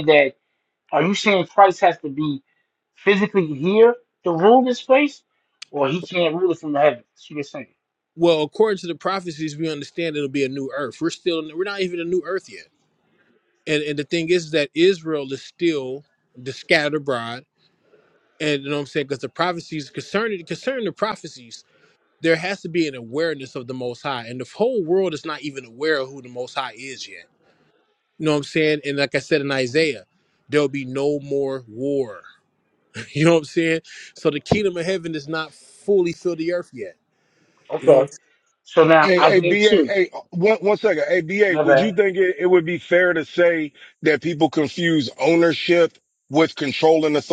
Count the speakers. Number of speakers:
three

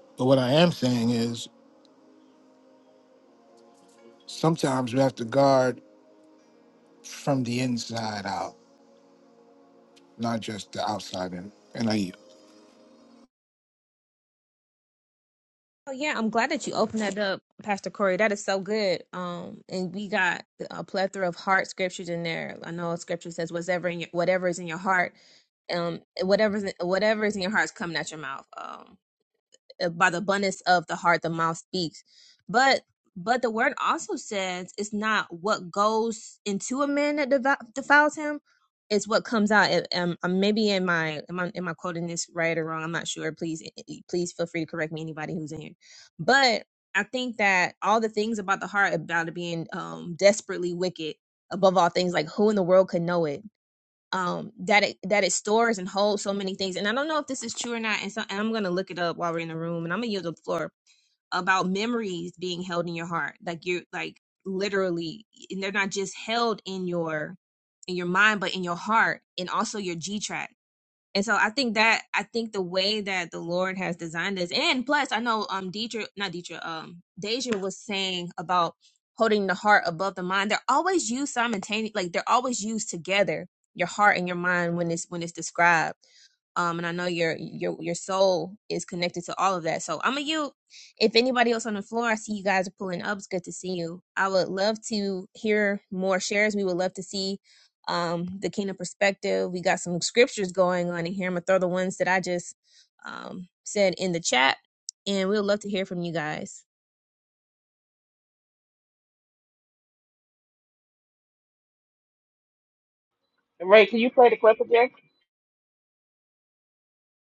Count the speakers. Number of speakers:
three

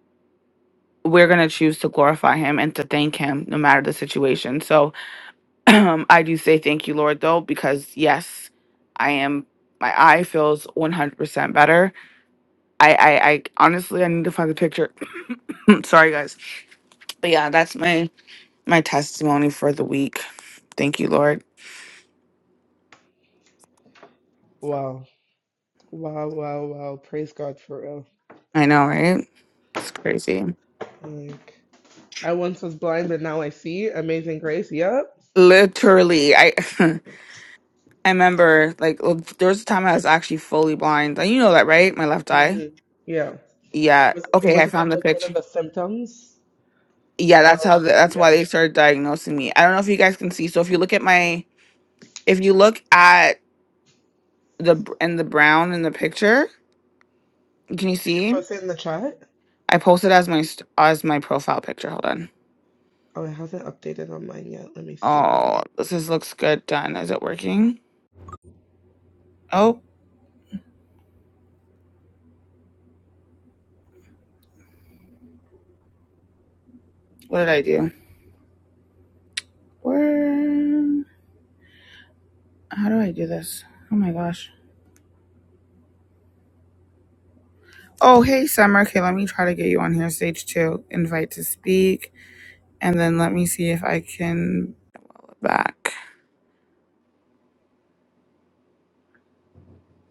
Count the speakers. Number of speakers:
two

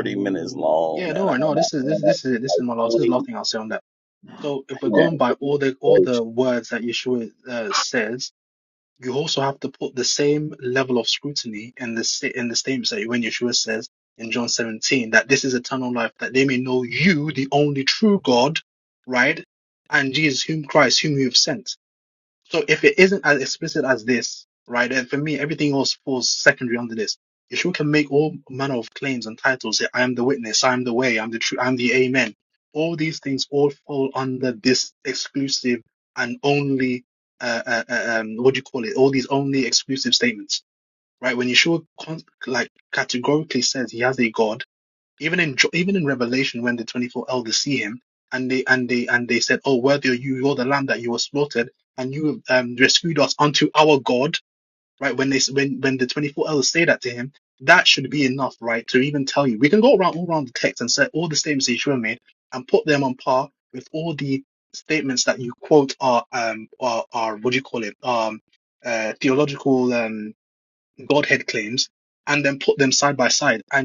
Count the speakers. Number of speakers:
two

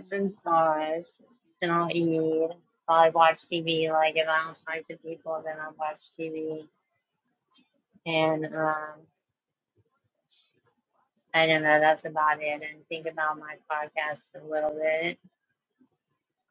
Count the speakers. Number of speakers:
one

